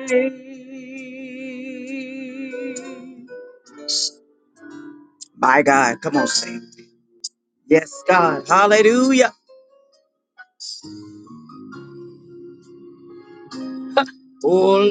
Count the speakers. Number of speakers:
one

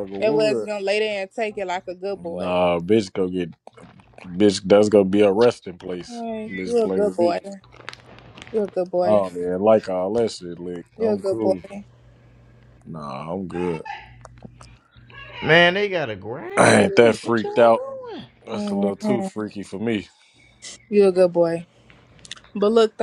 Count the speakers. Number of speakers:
three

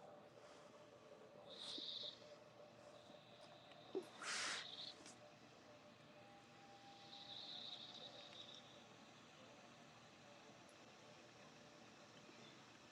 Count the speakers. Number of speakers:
zero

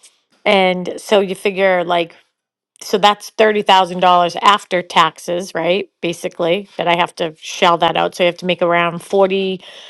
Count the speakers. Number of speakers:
one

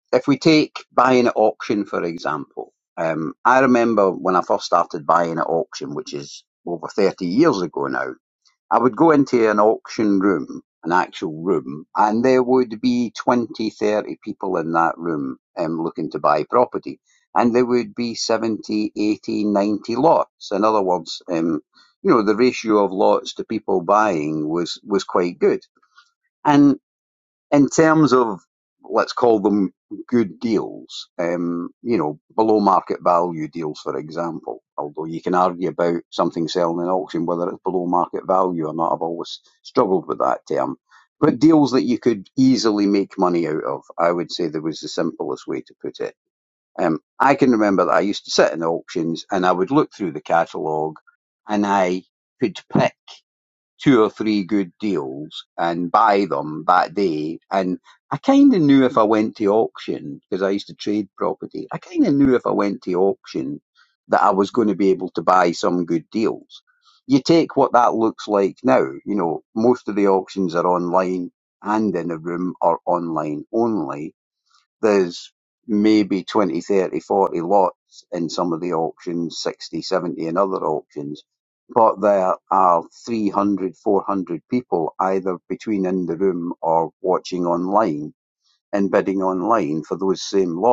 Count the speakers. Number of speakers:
one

